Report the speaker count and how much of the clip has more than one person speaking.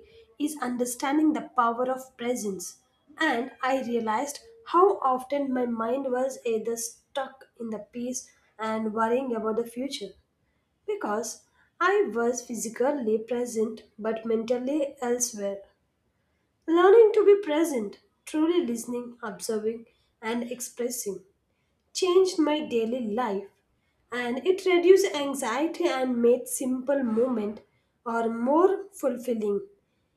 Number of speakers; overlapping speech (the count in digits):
1, no overlap